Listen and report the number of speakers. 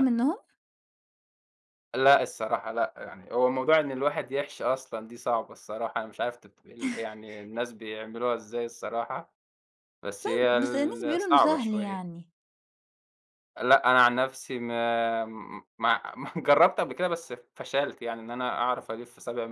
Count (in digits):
2